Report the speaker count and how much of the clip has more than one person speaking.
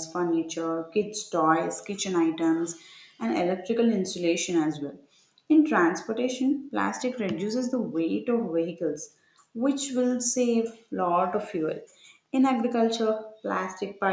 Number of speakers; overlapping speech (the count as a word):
one, no overlap